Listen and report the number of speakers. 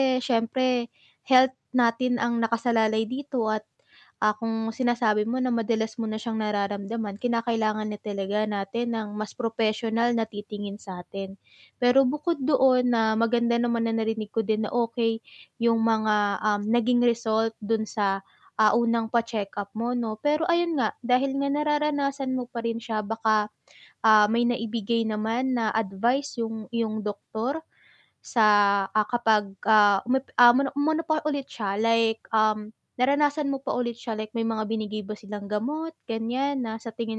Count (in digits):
1